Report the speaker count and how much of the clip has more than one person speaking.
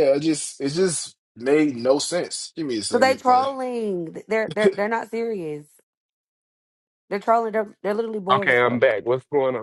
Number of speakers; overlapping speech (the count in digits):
3, about 11%